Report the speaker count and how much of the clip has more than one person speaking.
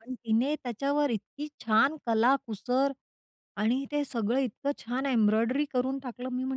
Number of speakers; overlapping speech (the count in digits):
1, no overlap